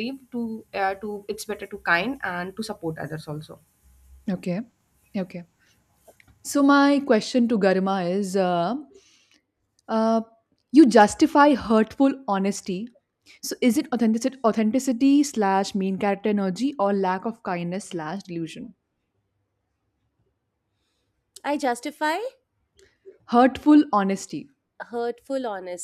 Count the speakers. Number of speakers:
three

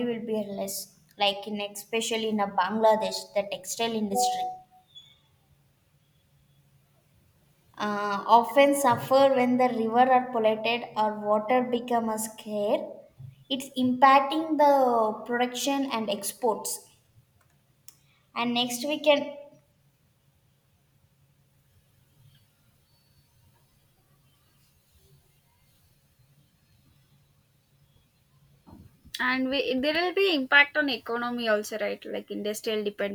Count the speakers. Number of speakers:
two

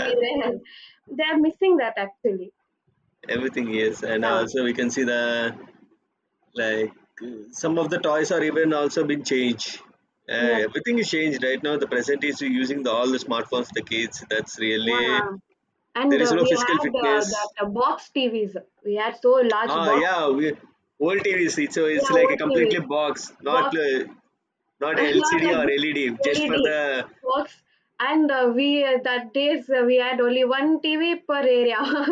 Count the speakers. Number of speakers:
two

